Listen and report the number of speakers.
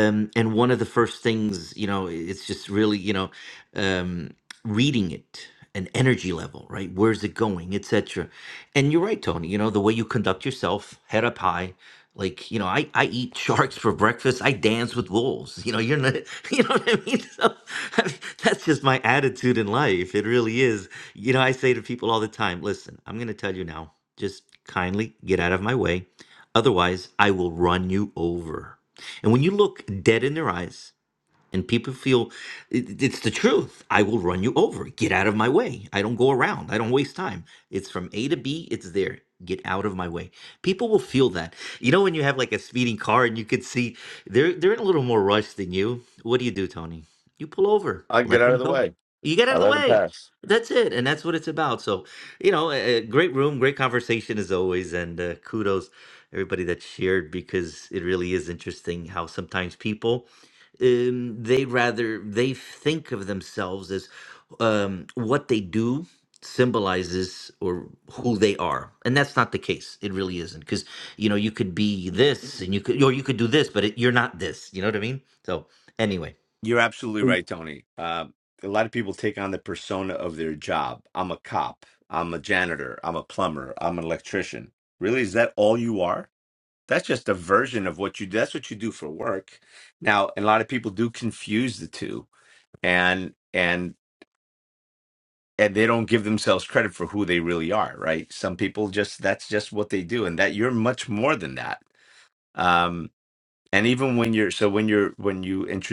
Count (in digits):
2